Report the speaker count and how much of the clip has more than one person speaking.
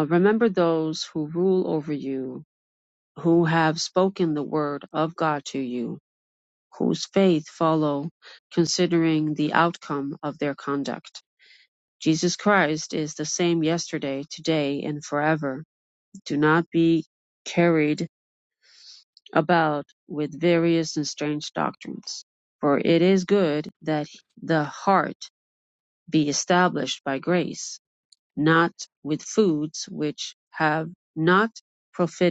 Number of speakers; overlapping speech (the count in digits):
1, no overlap